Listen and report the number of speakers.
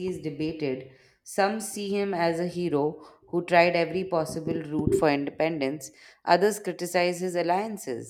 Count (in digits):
1